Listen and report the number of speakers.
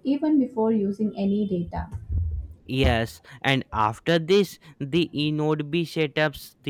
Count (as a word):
two